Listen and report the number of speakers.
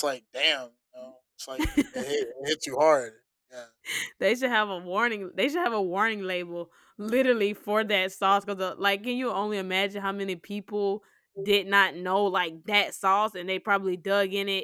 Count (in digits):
2